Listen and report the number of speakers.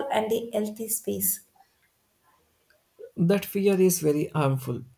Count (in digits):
2